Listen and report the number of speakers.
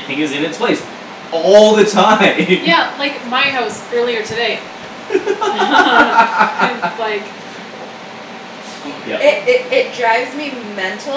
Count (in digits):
3